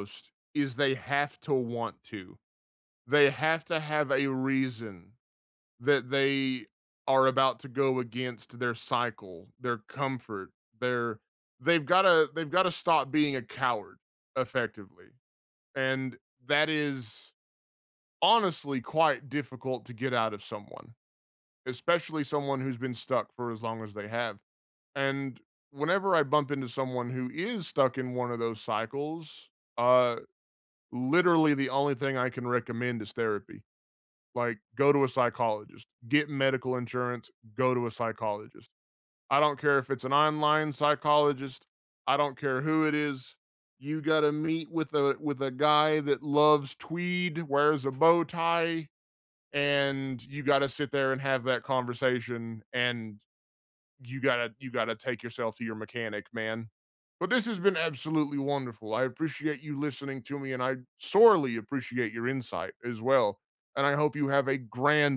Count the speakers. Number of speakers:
one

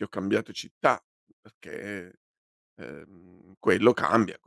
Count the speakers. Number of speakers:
one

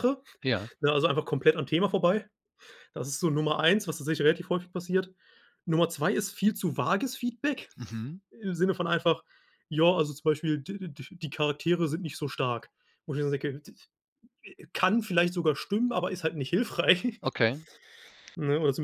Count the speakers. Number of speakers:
two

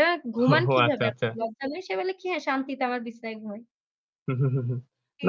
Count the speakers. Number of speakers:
two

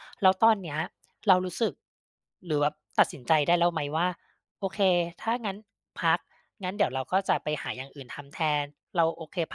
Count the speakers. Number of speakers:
one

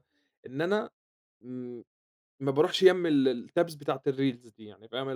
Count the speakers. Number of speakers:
one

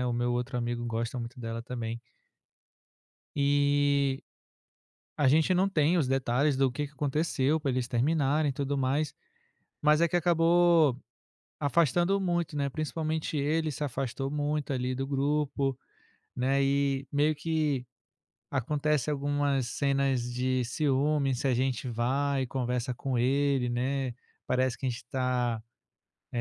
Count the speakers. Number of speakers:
one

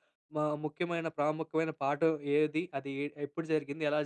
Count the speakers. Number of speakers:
one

